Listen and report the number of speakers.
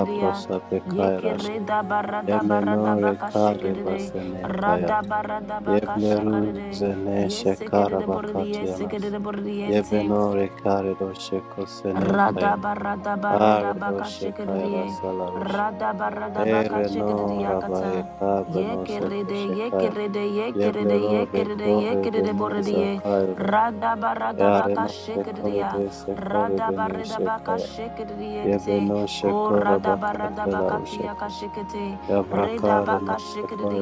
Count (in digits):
2